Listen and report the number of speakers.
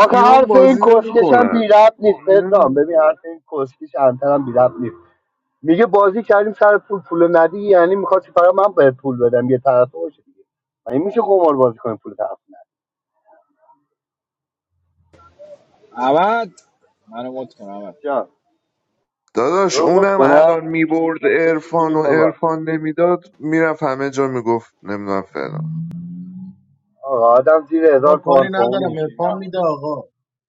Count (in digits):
4